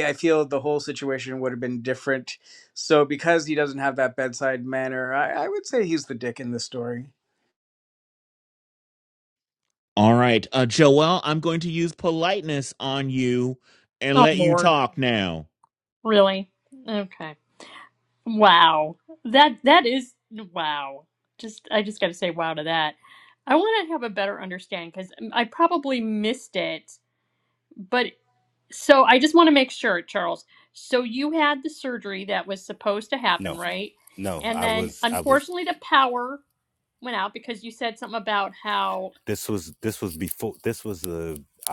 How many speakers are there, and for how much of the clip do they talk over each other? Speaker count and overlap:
4, about 4%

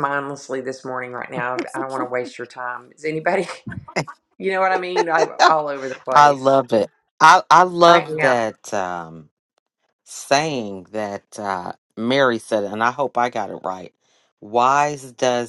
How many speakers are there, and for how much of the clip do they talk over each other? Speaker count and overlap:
2, about 5%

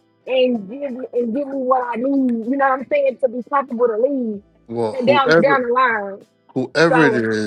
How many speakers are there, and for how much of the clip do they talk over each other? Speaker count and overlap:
2, about 14%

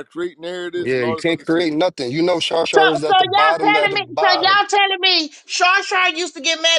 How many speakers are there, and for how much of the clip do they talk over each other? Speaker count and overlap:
3, about 40%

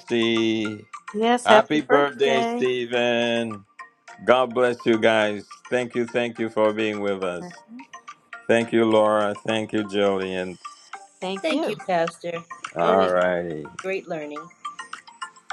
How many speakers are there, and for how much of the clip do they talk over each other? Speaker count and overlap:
3, about 12%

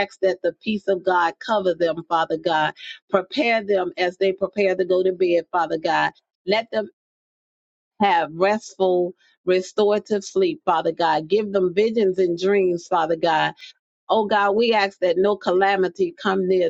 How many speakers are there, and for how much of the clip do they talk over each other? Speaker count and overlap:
1, no overlap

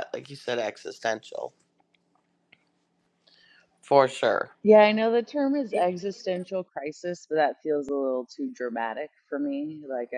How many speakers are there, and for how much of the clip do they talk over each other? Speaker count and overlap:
2, no overlap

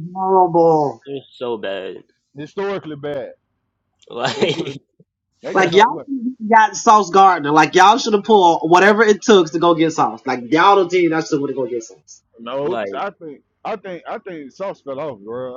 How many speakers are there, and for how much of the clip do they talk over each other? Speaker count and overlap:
3, about 6%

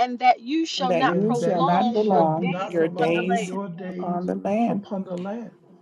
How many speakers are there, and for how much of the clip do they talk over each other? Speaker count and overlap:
3, about 57%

